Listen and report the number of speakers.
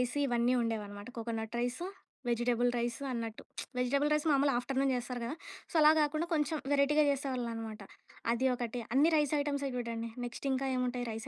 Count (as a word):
one